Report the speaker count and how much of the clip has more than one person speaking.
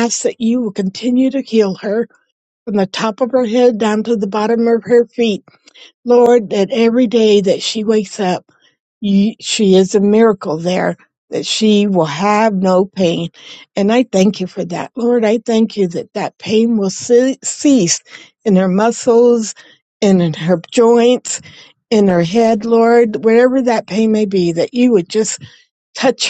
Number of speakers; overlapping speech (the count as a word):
one, no overlap